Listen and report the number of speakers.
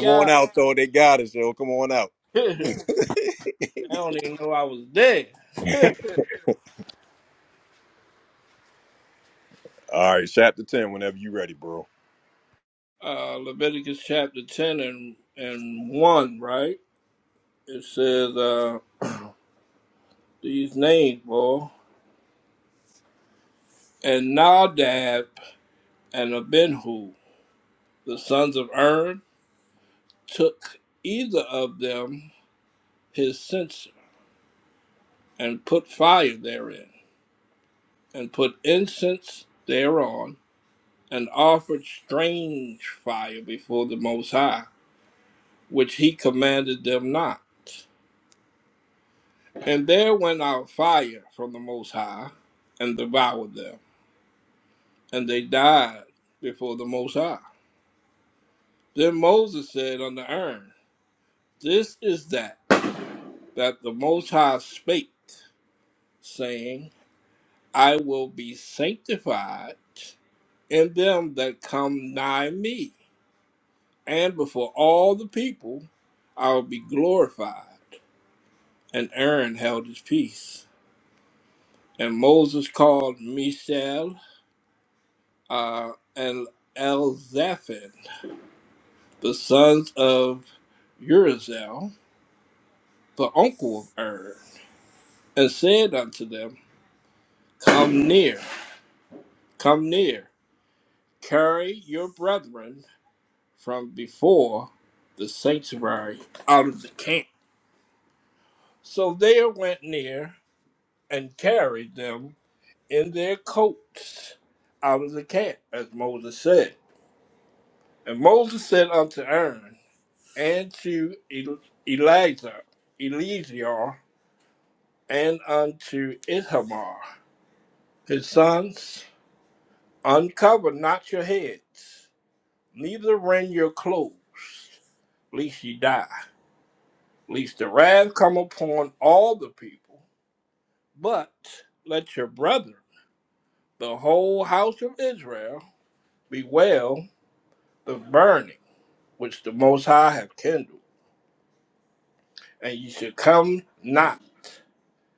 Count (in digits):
2